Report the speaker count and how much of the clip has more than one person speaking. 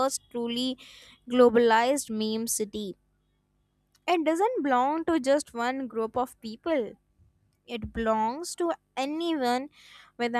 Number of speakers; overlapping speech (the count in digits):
1, no overlap